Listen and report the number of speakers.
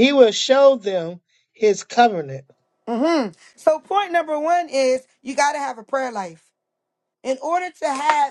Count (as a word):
two